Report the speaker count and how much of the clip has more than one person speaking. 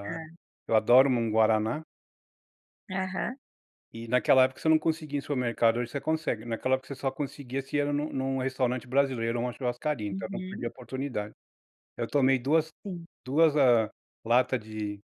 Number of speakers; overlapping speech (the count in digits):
2, about 4%